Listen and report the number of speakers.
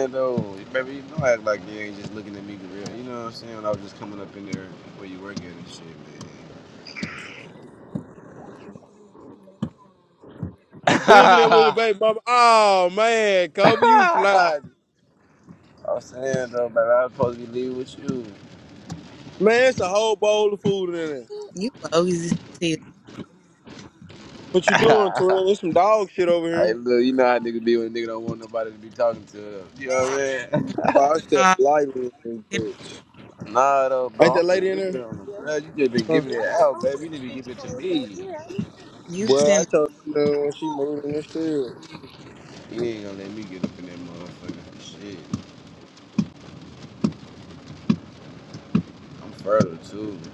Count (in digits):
3